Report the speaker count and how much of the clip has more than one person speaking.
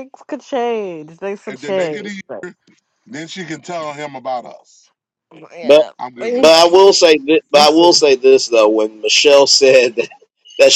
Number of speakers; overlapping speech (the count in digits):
3, about 20%